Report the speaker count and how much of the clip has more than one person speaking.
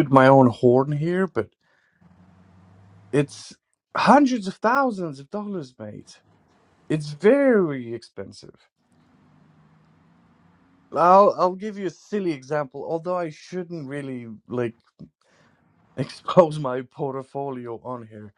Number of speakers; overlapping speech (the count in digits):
1, no overlap